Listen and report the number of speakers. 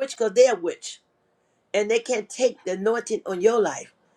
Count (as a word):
one